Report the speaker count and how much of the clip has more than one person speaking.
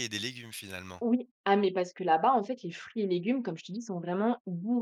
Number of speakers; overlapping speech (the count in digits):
2, no overlap